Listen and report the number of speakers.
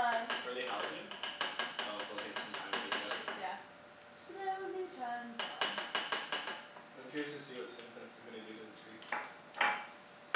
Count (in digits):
2